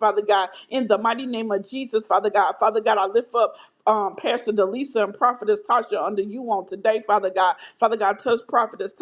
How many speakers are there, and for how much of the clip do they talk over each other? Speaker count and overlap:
1, no overlap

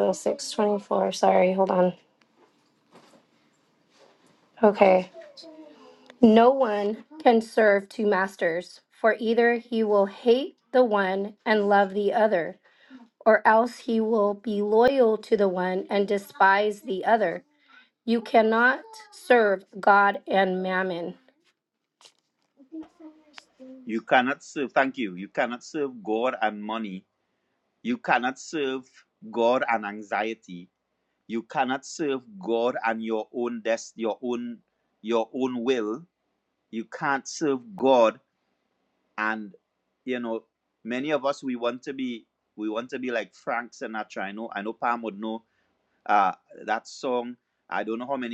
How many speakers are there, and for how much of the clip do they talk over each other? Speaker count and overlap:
2, no overlap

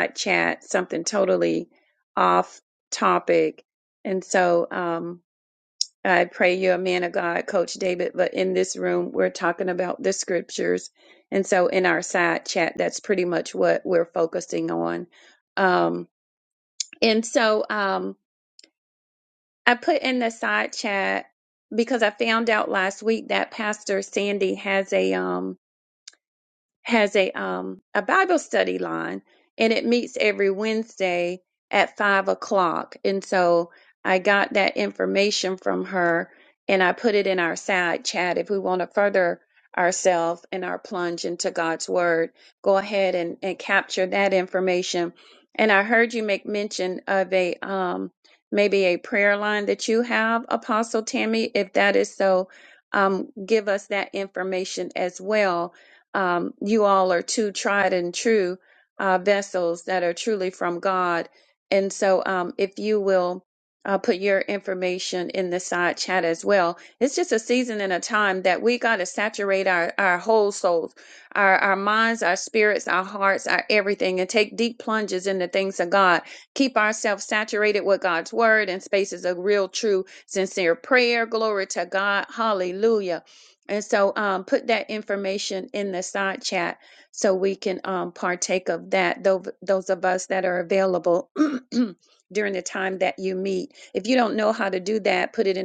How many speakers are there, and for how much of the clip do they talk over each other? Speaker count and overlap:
1, no overlap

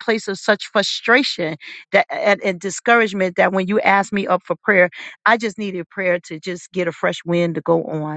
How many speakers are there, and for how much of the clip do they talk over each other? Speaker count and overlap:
1, no overlap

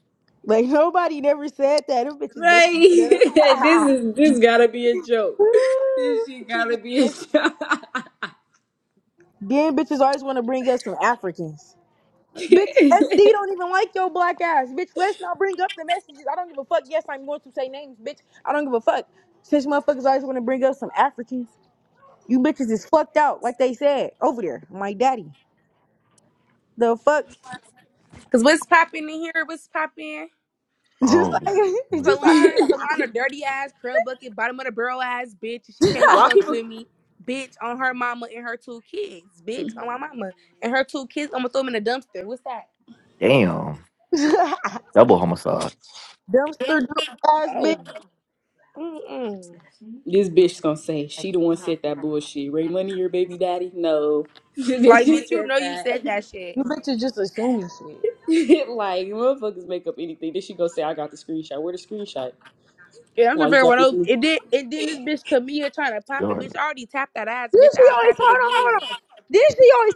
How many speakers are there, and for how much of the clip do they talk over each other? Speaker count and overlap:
4, about 10%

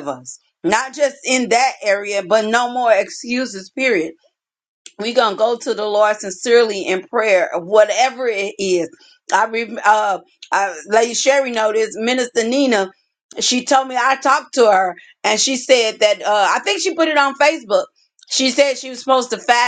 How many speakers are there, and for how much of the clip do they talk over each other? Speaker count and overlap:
1, no overlap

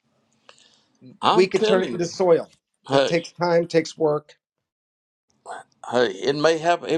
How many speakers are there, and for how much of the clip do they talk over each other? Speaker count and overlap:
2, about 14%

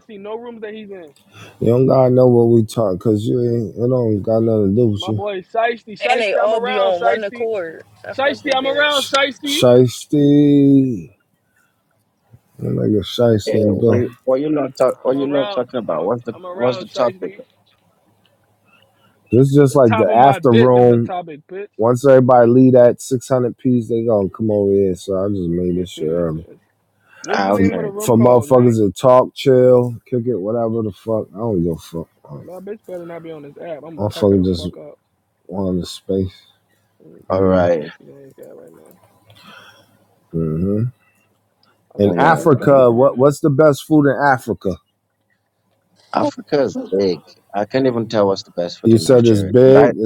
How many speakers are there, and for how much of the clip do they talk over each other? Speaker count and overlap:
4, about 25%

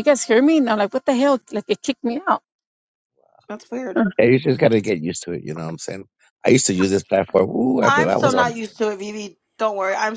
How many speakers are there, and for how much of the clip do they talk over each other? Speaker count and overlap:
3, about 7%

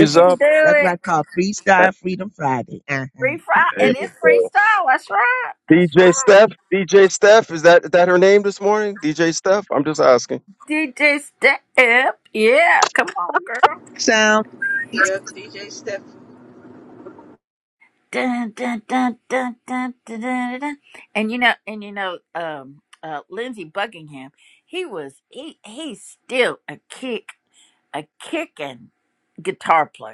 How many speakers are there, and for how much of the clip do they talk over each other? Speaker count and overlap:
4, about 8%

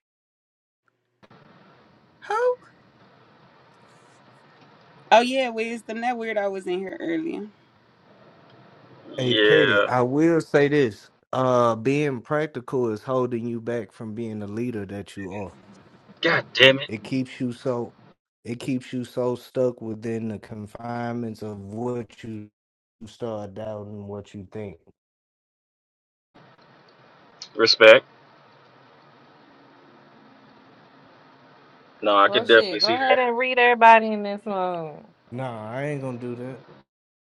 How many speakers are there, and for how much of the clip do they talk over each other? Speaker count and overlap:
4, about 4%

